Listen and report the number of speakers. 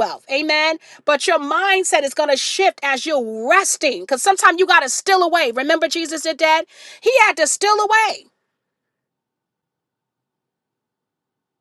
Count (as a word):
one